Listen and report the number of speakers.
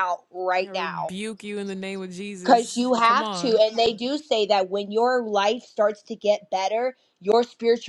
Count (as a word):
two